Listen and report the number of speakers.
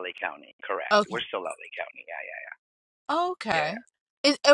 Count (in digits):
2